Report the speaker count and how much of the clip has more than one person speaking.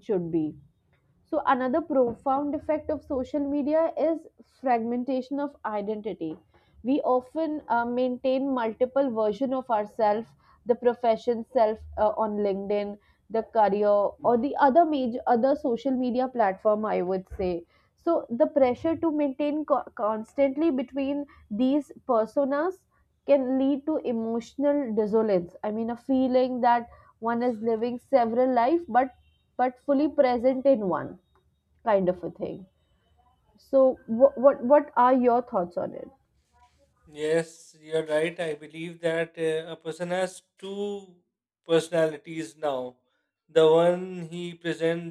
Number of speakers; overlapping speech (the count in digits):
2, no overlap